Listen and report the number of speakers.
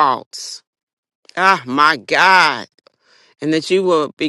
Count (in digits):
1